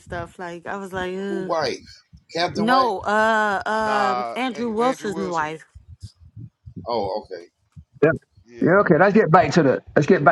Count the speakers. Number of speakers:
four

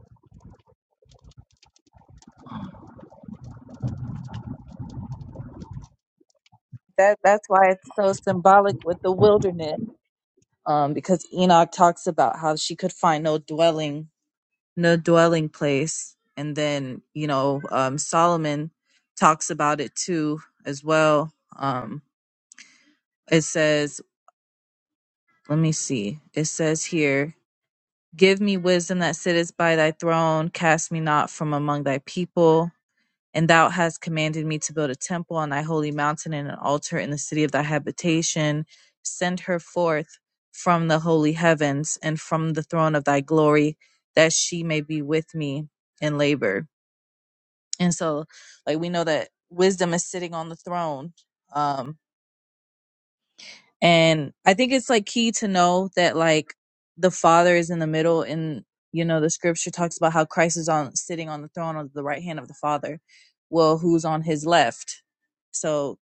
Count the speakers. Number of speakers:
one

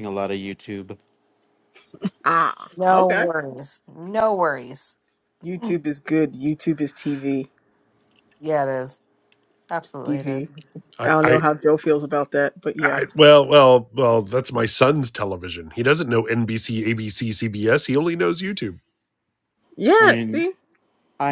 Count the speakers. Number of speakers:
four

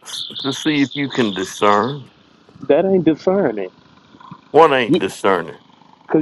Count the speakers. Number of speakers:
two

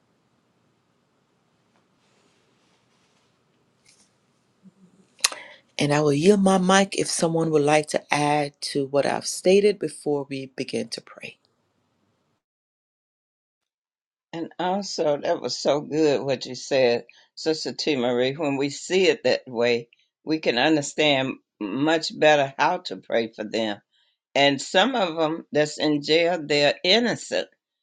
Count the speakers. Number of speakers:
two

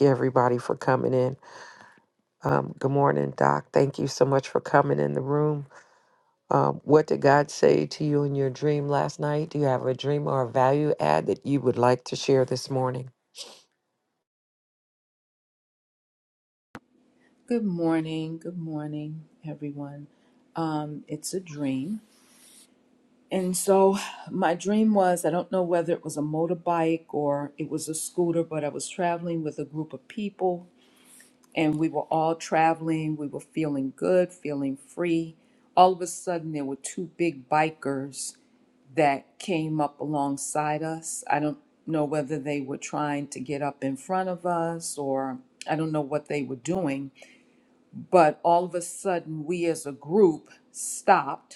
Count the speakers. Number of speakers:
two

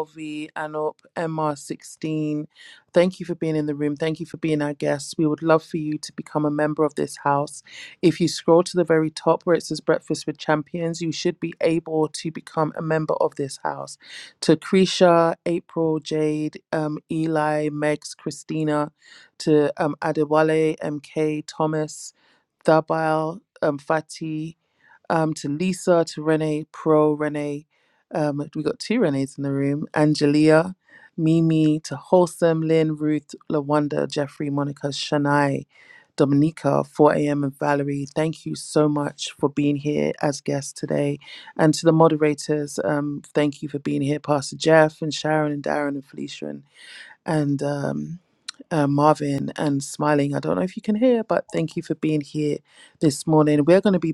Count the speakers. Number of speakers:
one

